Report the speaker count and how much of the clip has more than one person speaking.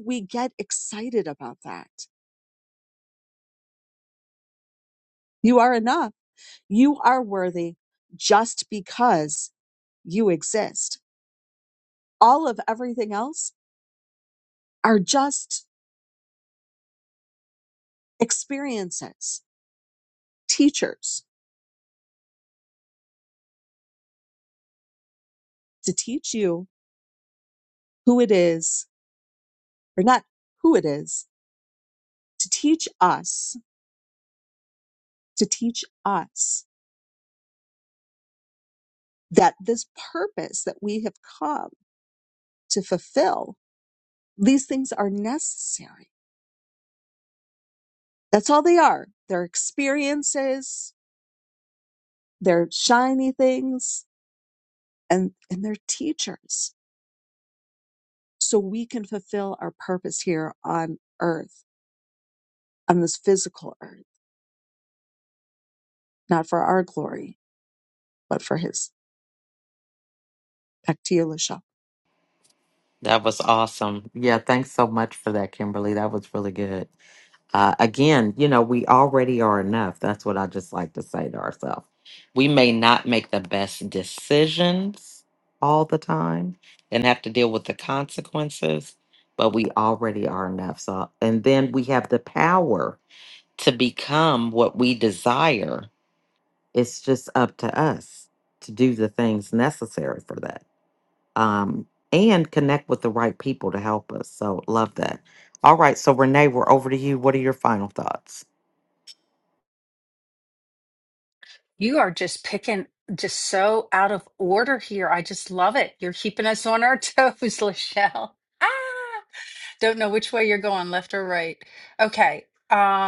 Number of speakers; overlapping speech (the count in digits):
3, no overlap